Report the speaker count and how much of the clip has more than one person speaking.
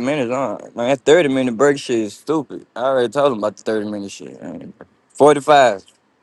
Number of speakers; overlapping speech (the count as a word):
one, no overlap